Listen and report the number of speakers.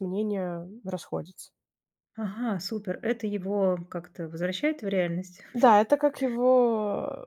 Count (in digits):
2